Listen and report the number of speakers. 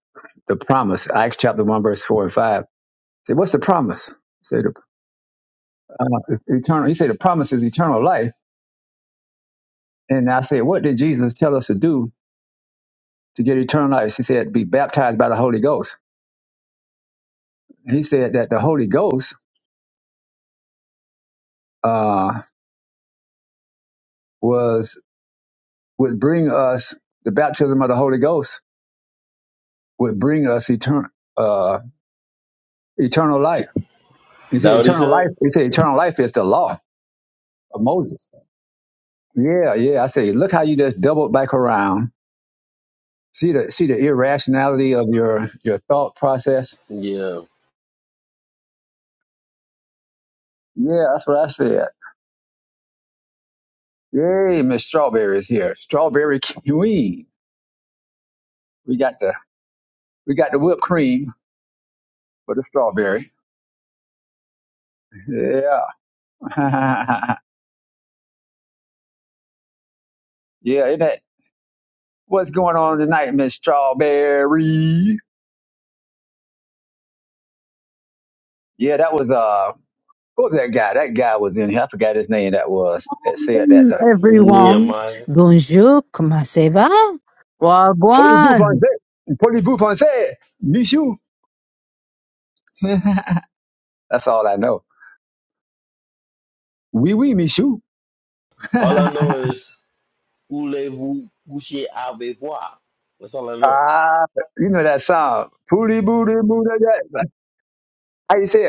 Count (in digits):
3